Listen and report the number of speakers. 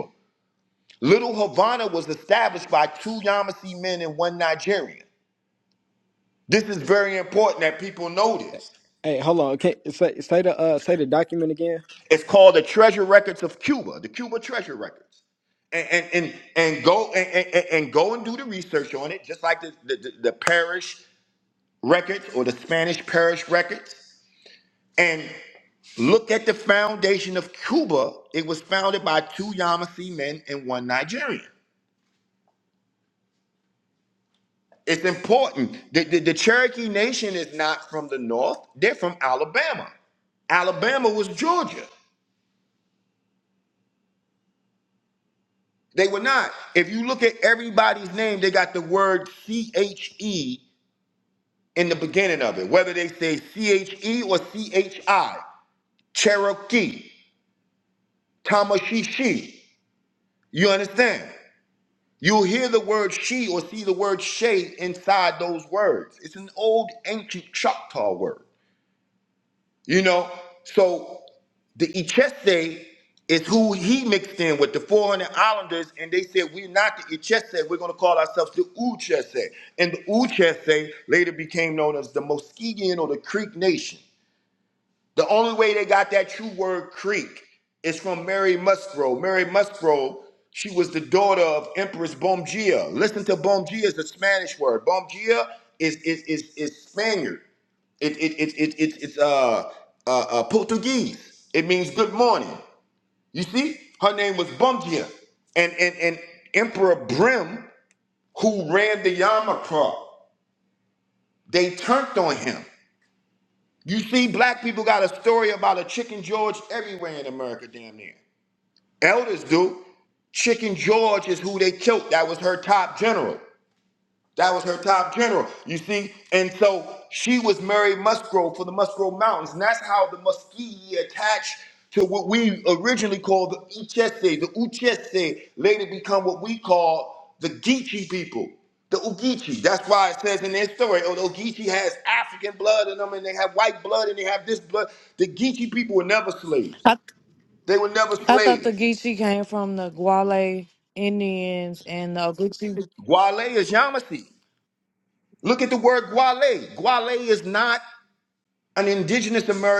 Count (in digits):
3